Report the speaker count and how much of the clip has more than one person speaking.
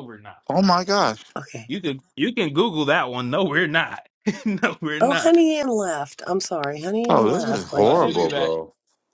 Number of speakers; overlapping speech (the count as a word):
three, about 21%